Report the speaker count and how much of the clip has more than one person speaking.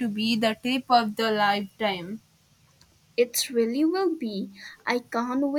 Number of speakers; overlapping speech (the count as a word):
two, no overlap